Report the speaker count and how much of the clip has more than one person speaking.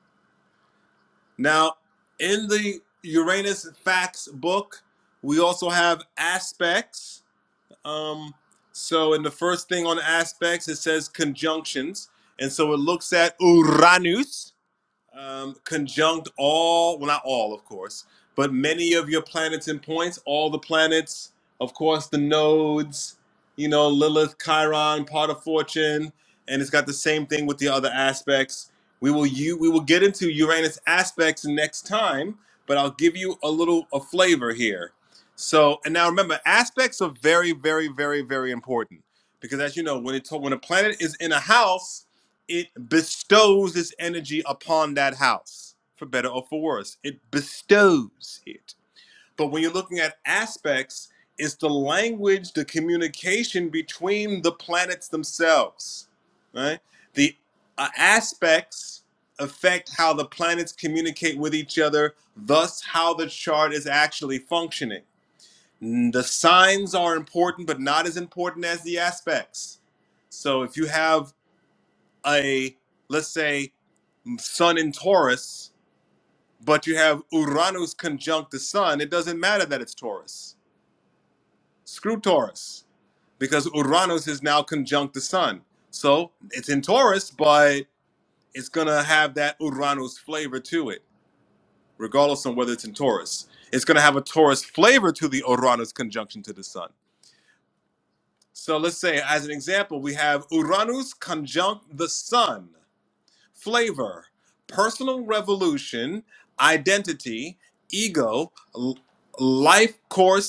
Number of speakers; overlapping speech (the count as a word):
one, no overlap